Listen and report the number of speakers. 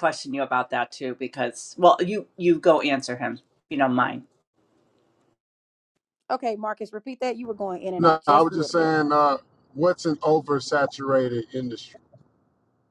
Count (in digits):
3